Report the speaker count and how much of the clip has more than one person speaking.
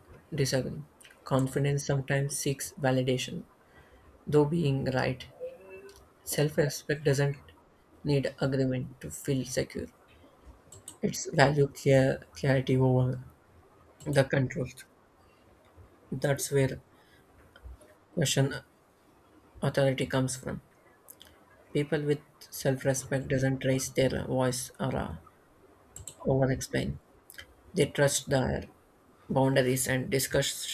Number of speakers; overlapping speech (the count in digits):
1, no overlap